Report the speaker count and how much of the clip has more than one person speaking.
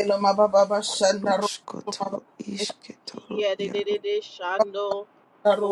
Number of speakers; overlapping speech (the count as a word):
three, about 24%